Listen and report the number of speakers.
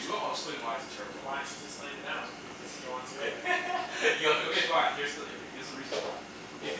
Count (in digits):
3